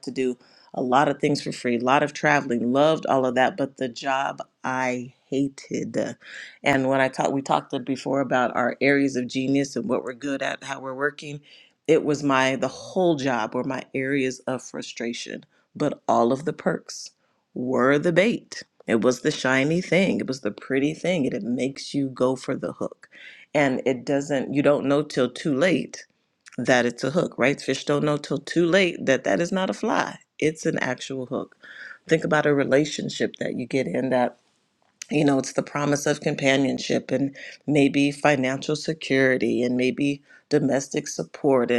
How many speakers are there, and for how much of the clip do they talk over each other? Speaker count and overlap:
1, no overlap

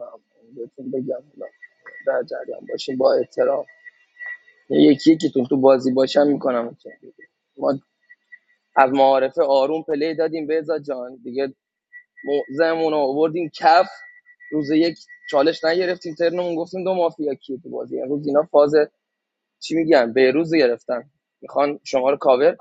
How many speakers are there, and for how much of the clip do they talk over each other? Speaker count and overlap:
1, no overlap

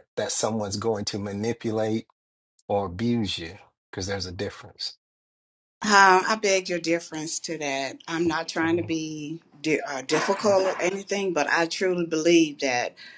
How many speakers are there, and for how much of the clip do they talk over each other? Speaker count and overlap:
2, about 2%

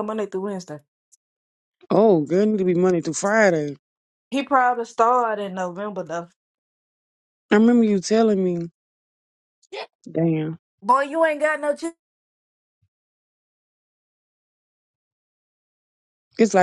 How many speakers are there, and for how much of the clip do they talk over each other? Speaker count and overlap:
2, no overlap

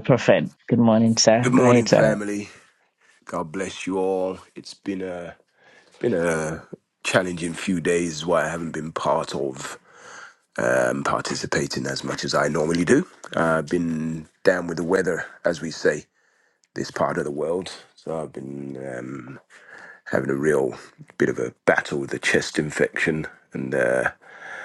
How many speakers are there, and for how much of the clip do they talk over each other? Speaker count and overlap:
2, about 3%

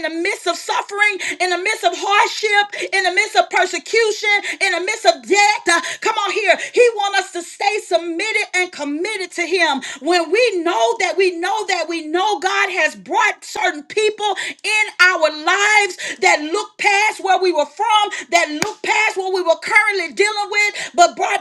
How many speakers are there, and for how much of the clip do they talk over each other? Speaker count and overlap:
1, no overlap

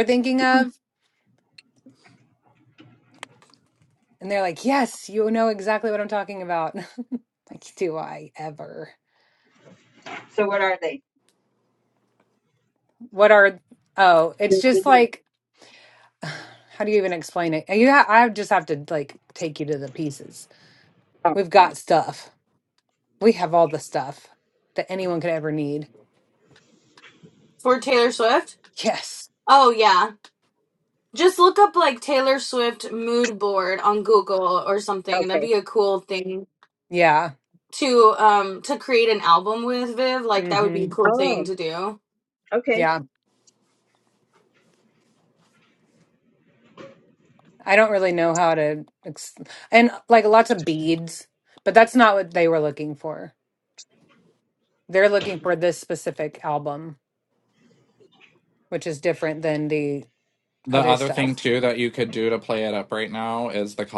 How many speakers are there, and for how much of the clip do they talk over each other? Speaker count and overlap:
4, about 5%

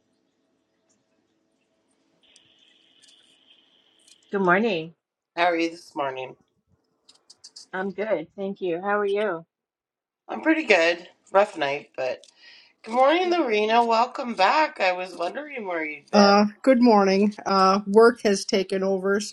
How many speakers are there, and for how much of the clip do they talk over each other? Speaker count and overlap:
3, about 2%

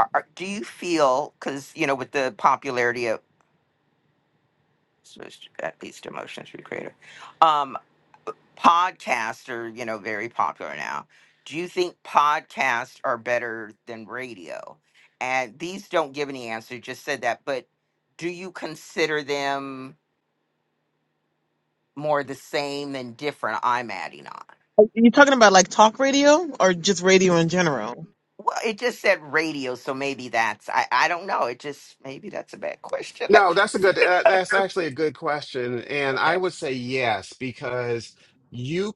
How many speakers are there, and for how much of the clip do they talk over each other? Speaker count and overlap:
3, about 2%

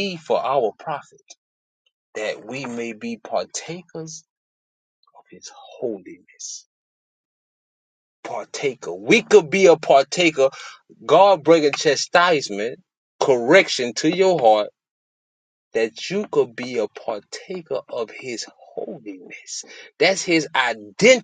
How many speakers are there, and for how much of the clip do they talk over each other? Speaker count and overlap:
1, no overlap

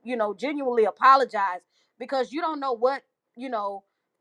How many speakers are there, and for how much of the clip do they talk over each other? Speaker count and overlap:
1, no overlap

